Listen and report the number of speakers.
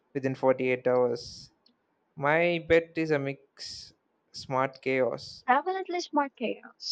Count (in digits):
2